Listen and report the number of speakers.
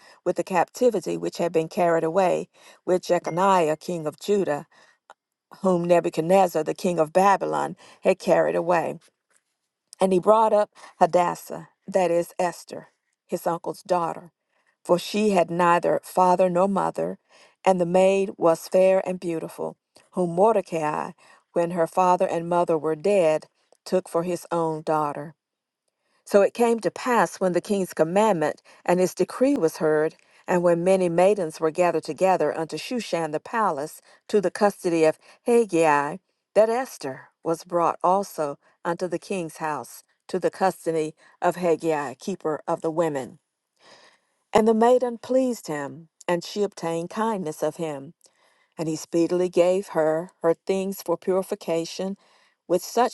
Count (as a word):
one